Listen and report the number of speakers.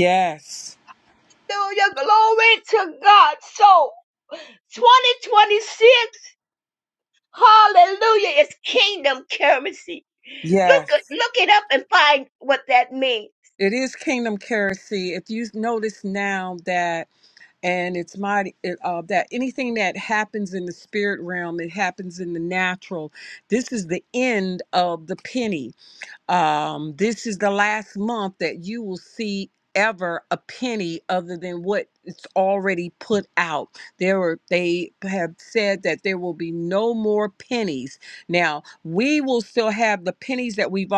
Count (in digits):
2